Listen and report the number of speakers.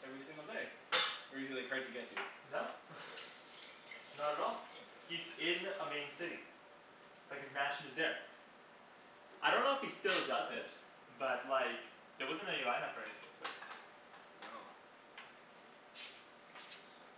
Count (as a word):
two